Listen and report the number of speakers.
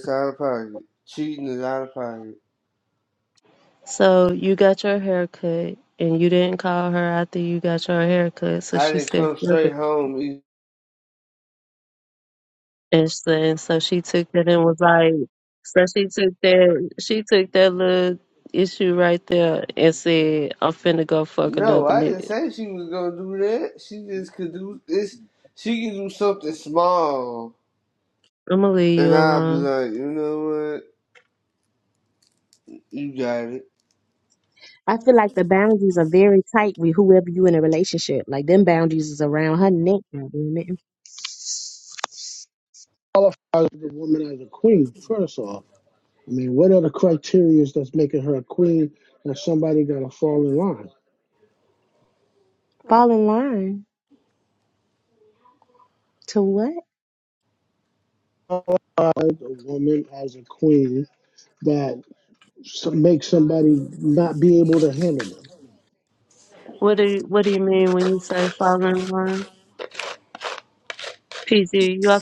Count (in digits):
4